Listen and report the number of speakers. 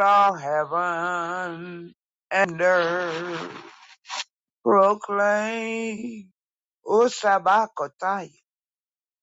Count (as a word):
one